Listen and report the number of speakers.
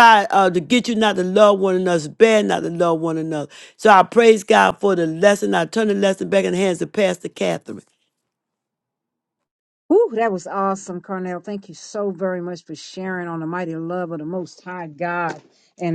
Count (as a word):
two